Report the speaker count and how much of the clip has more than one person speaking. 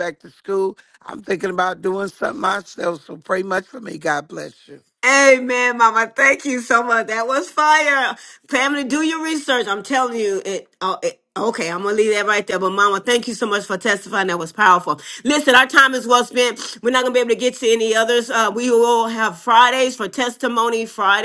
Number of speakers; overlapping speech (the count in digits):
2, no overlap